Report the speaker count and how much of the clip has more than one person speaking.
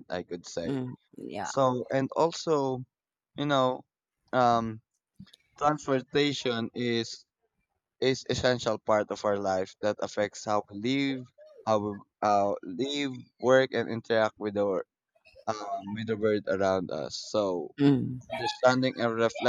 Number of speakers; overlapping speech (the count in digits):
2, about 1%